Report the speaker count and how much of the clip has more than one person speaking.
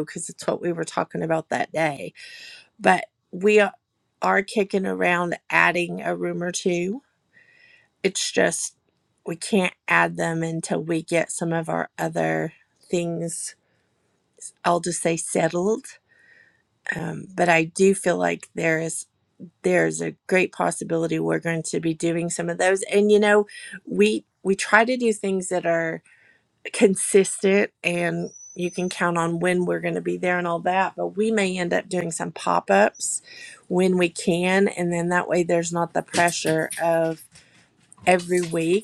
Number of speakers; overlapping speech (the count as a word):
one, no overlap